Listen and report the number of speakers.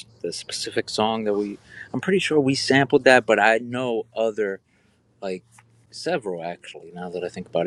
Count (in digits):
1